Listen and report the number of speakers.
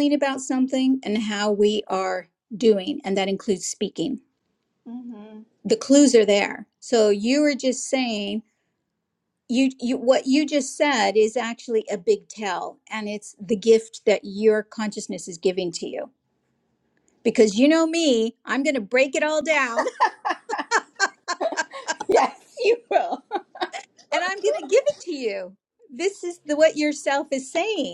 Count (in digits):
2